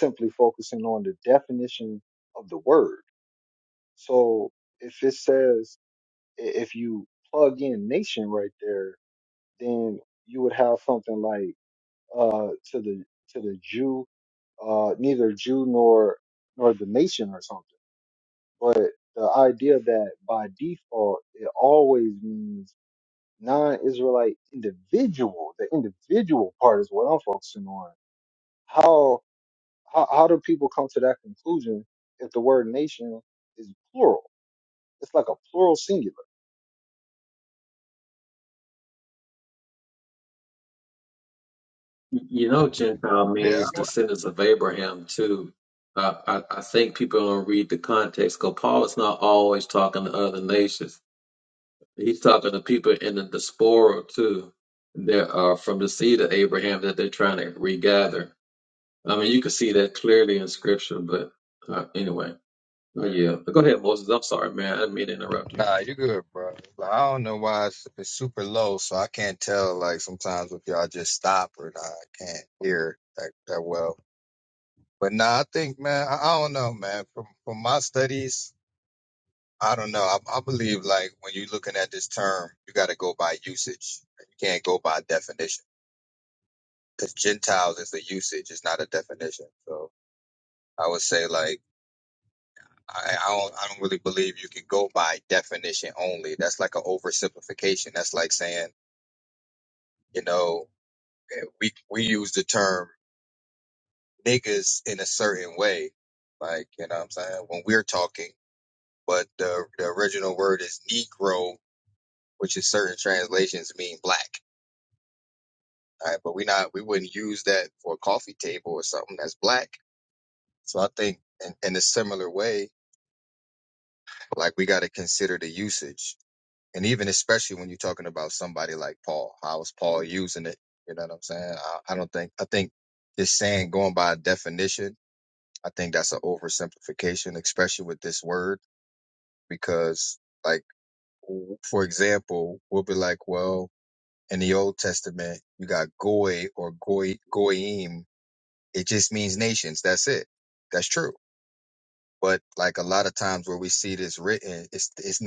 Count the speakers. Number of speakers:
3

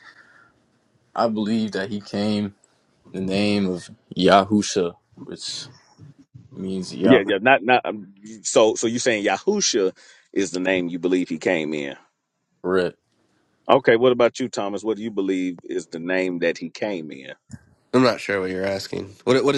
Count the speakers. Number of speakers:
3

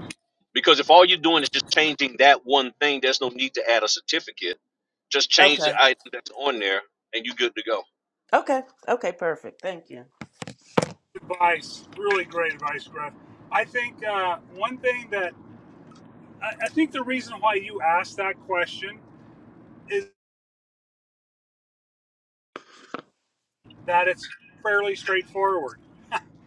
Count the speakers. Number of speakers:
3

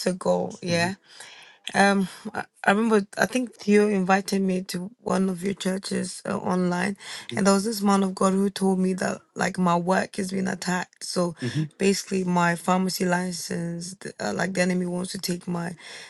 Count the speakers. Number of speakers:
1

